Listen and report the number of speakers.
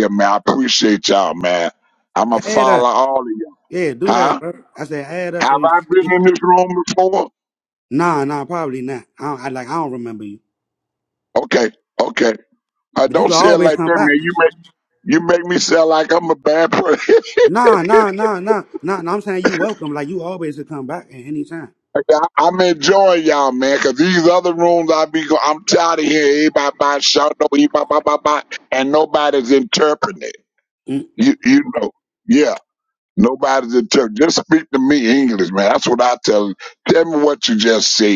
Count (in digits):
2